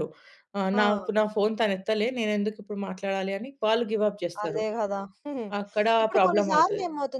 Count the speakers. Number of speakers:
2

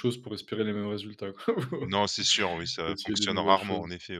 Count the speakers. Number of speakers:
2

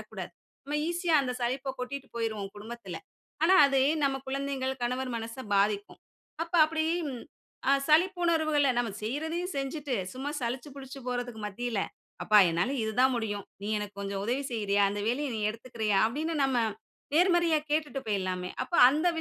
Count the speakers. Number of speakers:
1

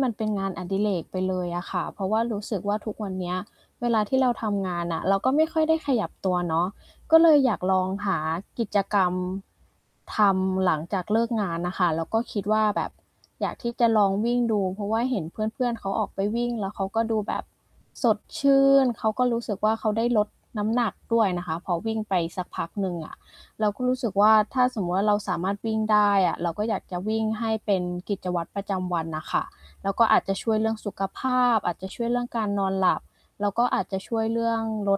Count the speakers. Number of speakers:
1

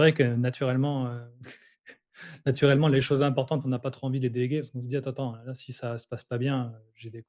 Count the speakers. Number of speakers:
1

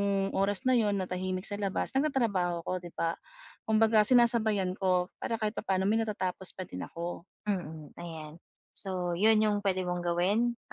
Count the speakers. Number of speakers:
2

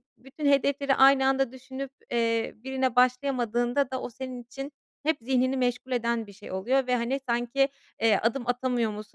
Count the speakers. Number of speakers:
1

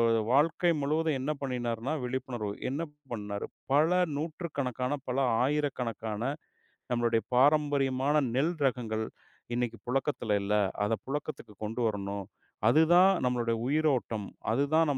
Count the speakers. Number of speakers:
1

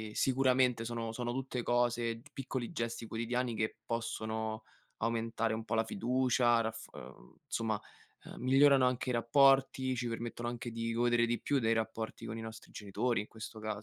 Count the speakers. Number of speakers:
1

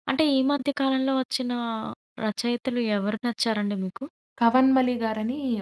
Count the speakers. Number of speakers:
2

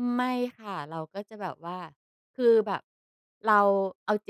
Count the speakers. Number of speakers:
1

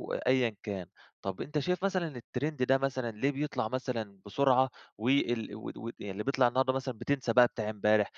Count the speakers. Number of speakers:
1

